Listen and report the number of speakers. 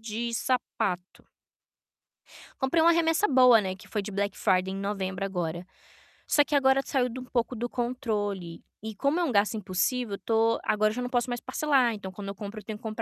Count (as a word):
one